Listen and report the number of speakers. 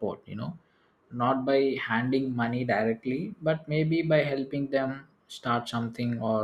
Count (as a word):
one